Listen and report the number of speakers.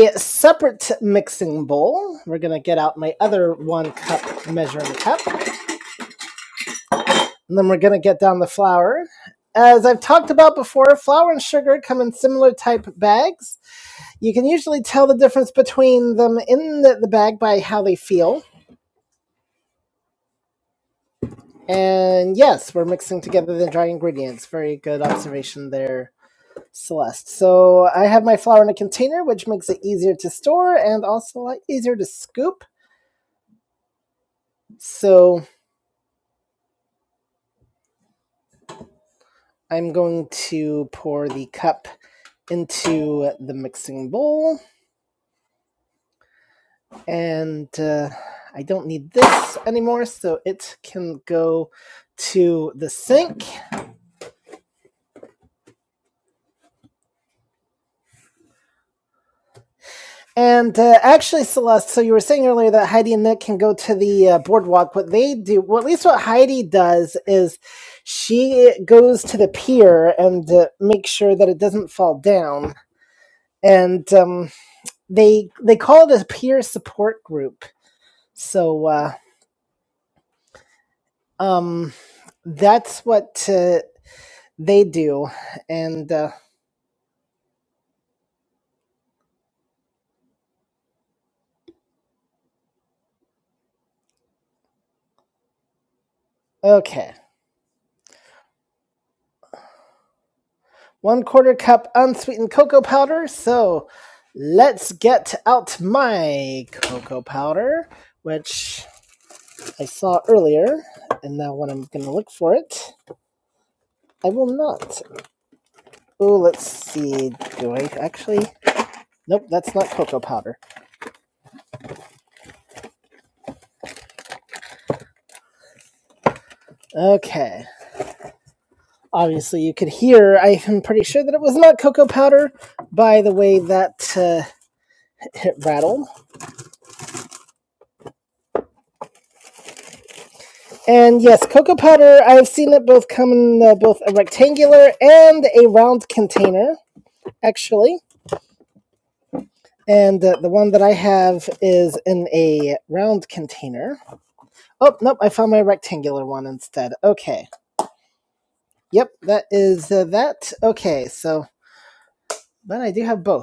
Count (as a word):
one